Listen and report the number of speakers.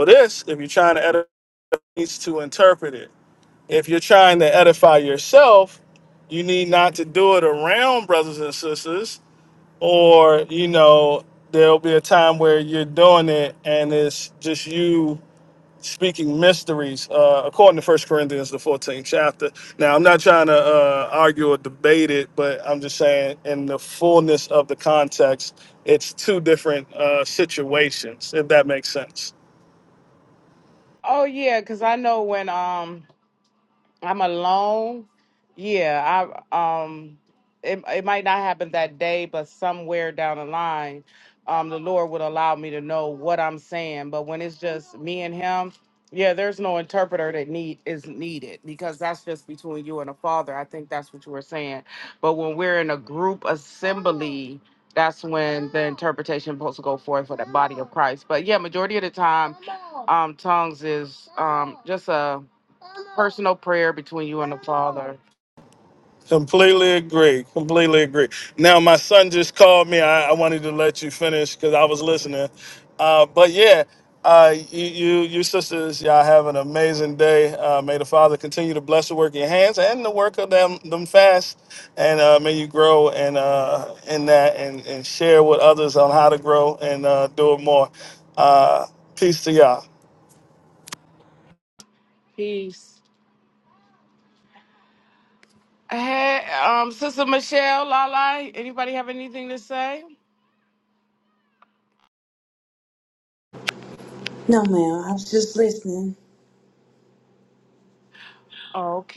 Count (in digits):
3